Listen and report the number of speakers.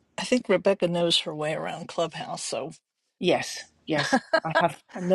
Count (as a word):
two